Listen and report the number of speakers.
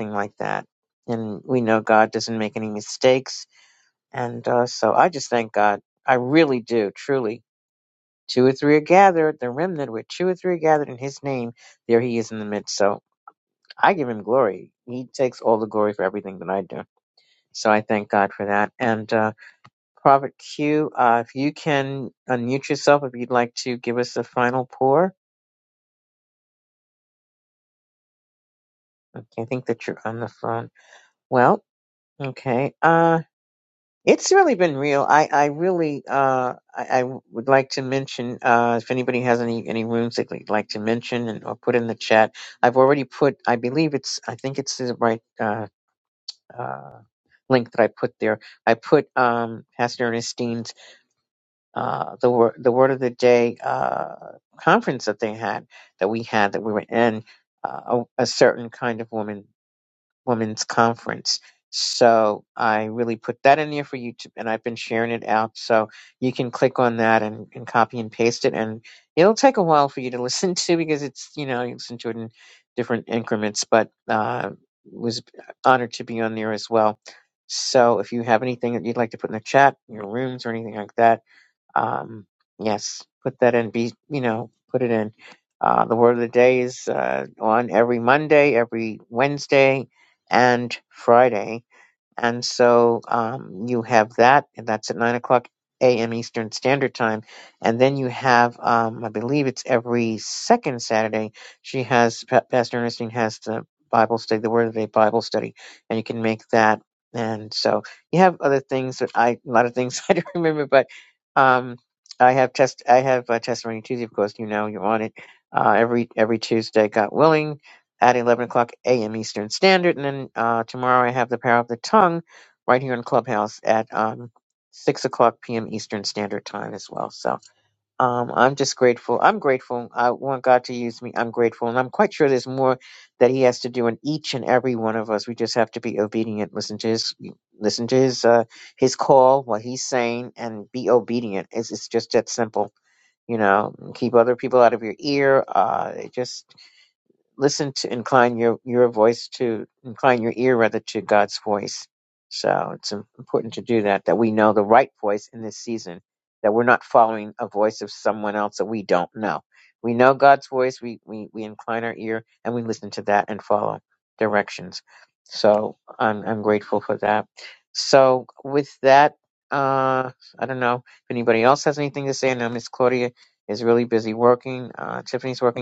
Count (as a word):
one